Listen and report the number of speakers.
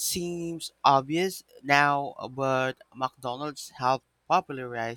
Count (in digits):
1